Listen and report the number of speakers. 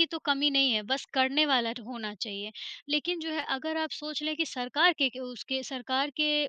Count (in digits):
1